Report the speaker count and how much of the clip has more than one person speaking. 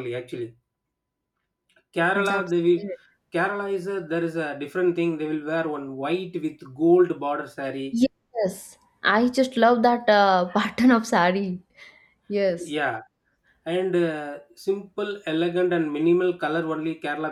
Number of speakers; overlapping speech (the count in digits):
2, about 4%